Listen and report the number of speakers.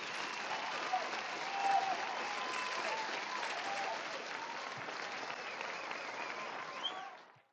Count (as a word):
zero